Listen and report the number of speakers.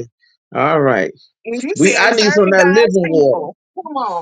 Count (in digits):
2